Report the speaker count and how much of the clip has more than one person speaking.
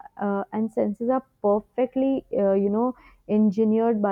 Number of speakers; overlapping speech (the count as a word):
one, no overlap